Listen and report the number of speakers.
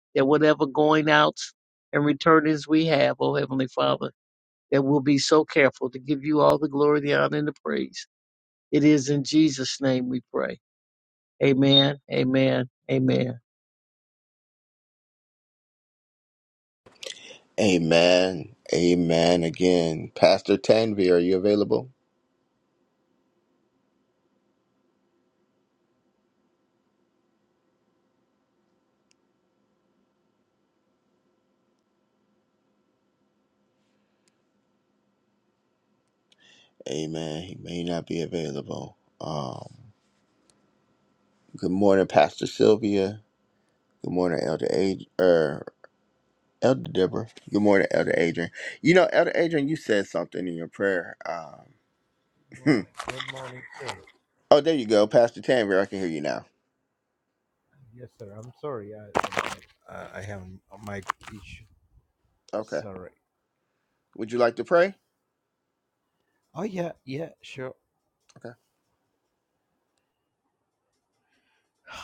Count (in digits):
3